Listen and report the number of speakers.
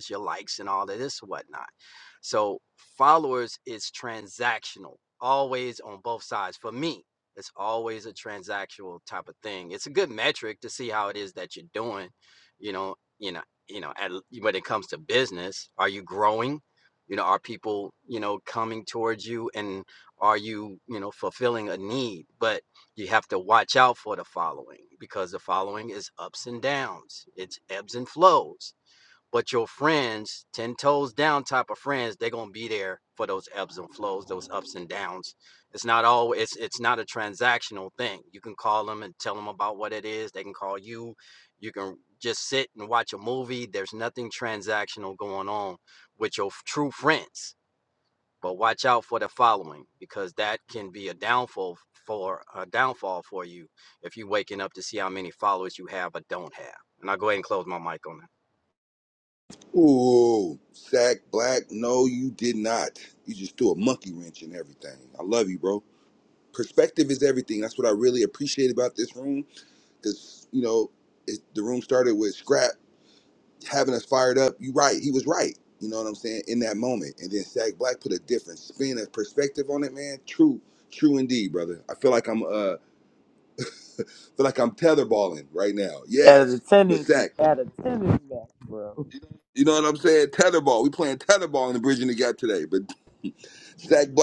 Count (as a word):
three